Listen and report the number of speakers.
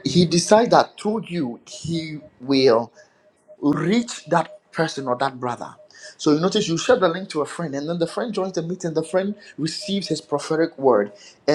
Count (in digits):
1